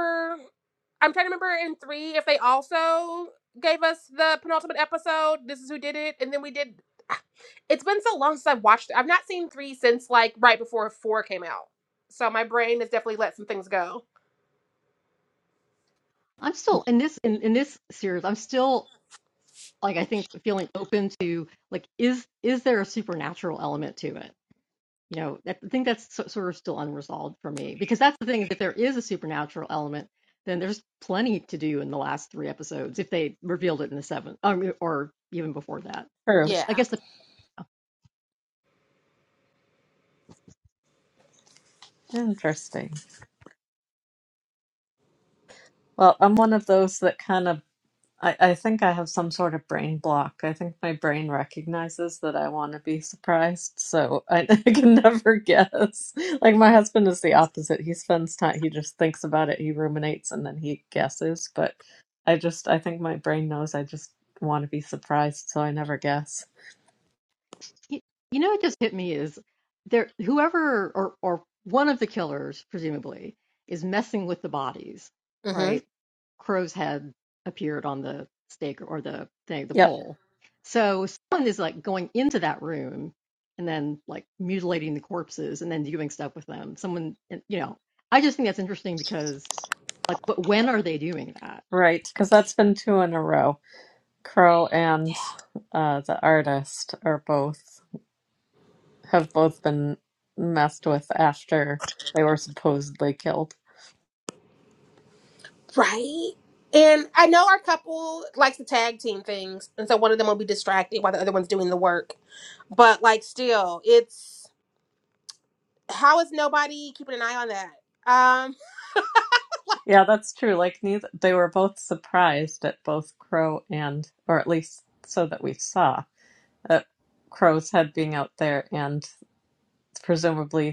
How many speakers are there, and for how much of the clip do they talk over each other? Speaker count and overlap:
three, about 1%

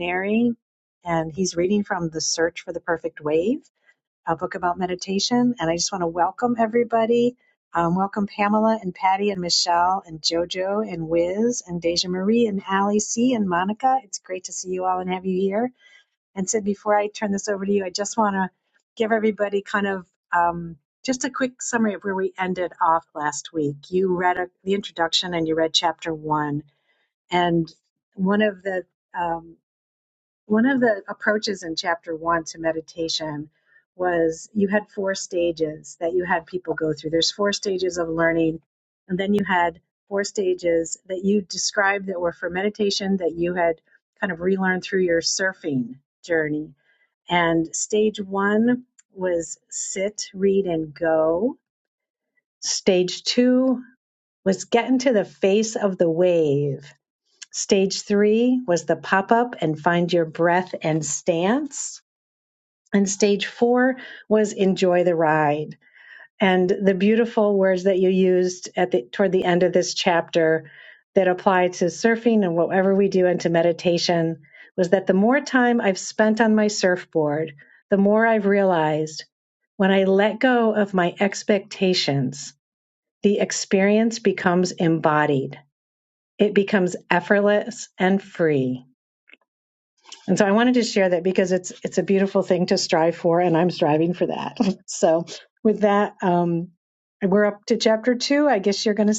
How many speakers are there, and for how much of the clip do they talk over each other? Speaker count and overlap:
one, no overlap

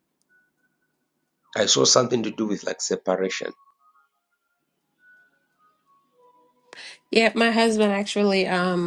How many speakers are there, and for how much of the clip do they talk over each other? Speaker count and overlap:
two, no overlap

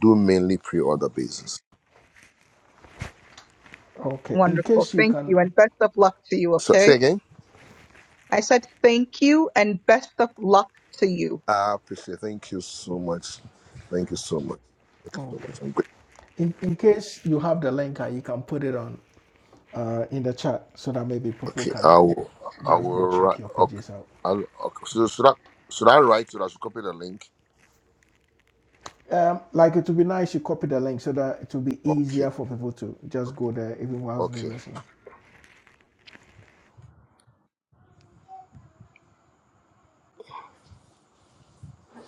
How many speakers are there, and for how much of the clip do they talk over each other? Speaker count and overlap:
three, about 10%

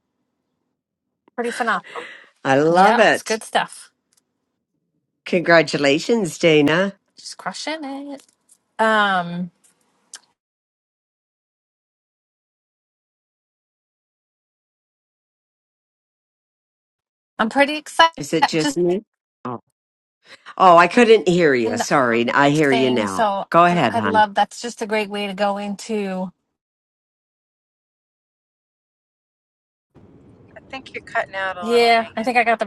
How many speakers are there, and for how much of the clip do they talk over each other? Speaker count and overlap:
three, about 10%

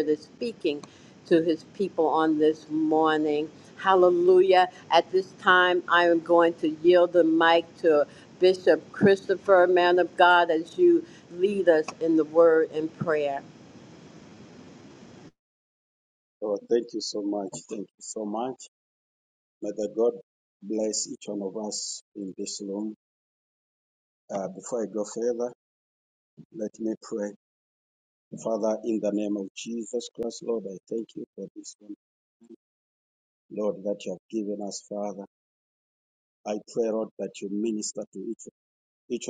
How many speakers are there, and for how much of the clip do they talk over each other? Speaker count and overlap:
two, no overlap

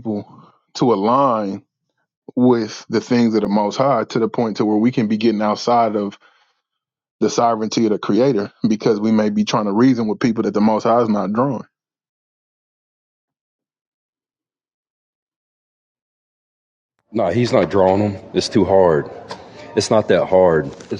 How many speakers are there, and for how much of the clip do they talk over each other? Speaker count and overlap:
two, no overlap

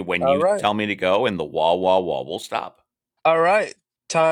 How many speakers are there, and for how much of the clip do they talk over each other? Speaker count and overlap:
two, about 10%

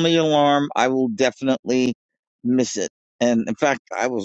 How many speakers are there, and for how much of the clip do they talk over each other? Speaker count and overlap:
one, no overlap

